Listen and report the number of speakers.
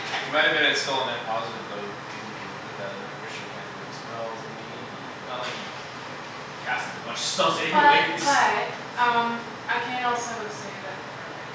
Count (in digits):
3